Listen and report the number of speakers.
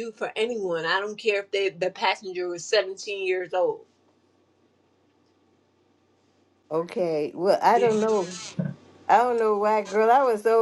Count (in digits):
2